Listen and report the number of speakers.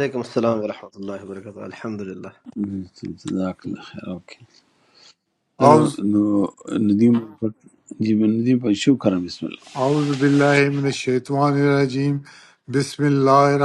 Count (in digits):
3